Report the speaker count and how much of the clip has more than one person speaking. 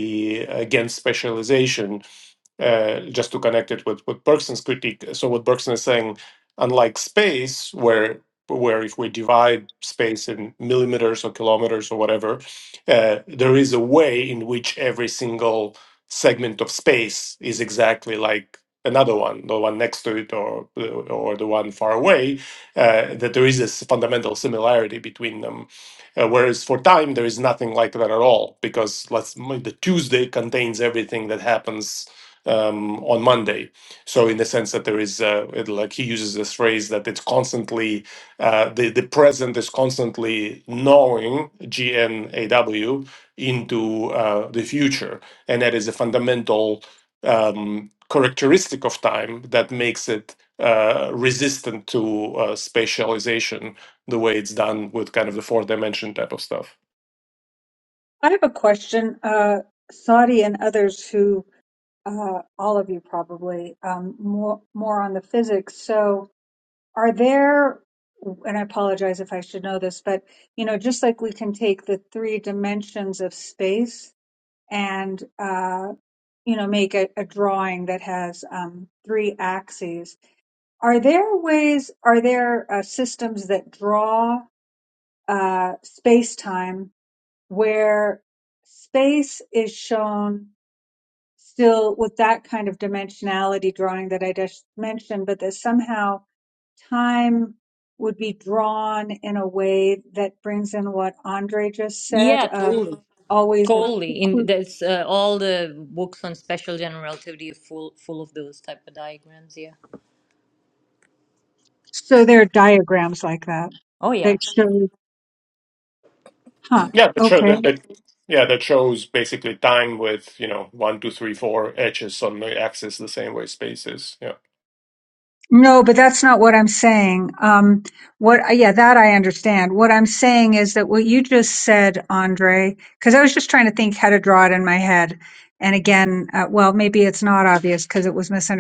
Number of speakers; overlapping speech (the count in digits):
3, about 1%